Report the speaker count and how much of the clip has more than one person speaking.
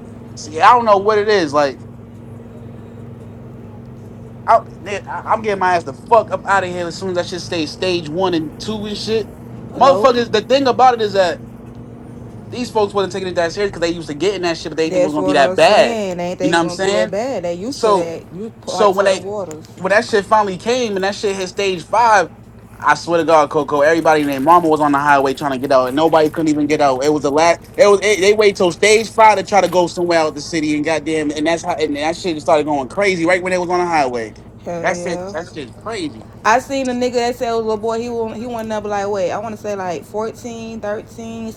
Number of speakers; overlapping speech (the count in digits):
2, about 9%